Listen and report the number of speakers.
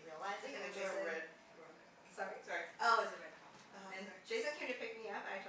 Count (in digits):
2